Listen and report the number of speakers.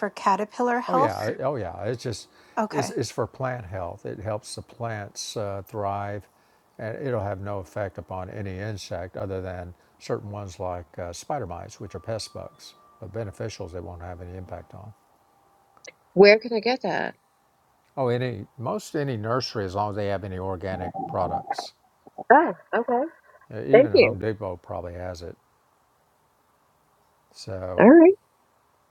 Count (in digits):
3